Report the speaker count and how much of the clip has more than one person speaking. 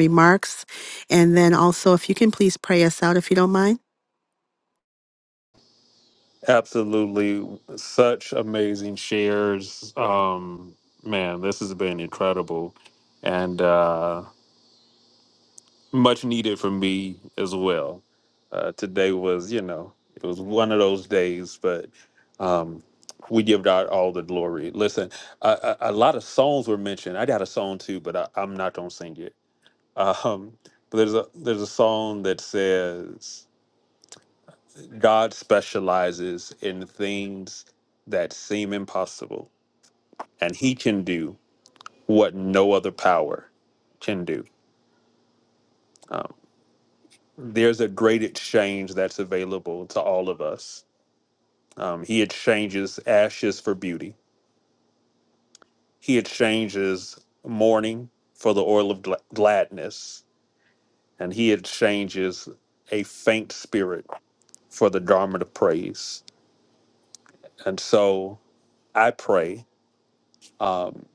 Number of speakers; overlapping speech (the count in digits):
2, no overlap